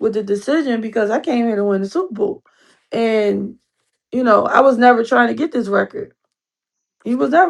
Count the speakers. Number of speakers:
1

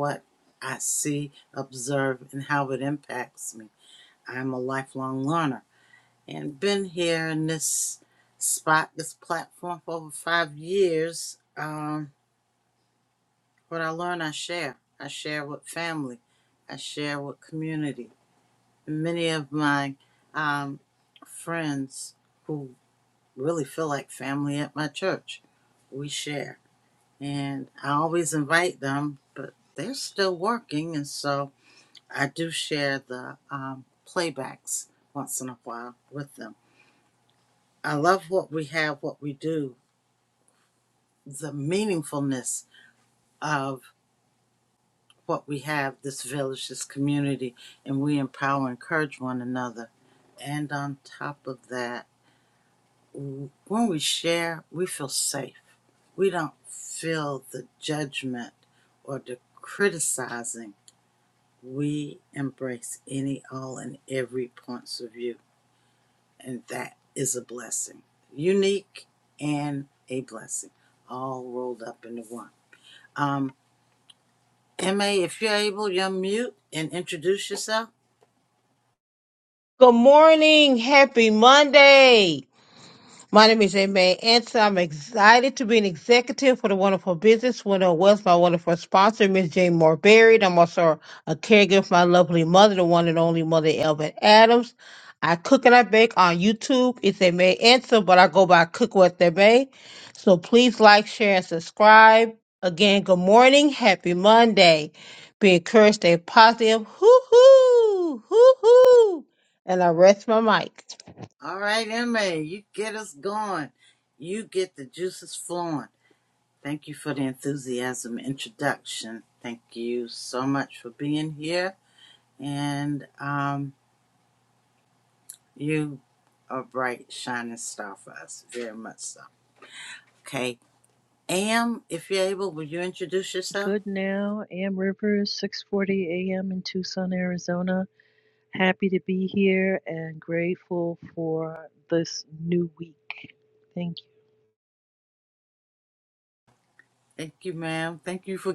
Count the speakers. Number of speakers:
3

